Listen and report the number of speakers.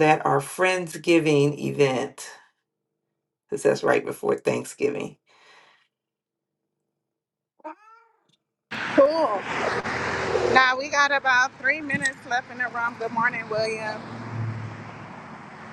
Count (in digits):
2